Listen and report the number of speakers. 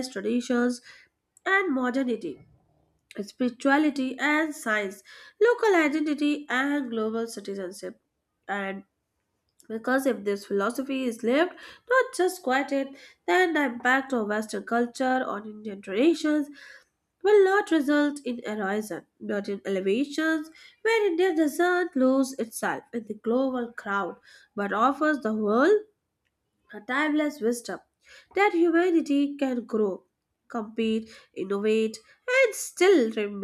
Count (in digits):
1